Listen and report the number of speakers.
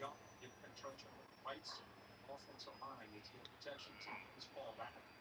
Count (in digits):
0